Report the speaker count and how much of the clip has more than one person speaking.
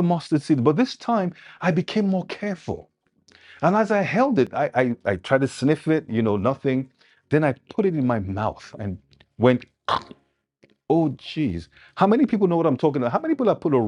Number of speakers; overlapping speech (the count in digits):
1, no overlap